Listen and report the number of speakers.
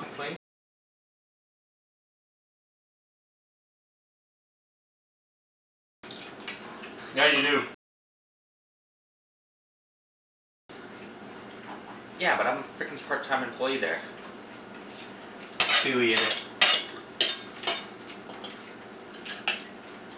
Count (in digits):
2